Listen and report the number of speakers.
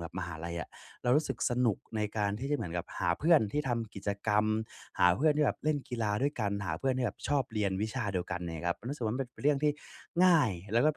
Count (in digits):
1